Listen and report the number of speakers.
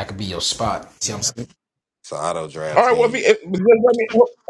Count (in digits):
3